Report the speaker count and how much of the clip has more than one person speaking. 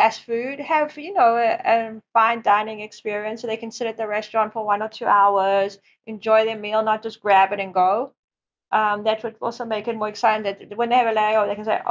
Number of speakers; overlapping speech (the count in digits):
1, no overlap